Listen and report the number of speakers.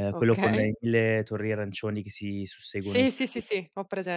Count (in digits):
2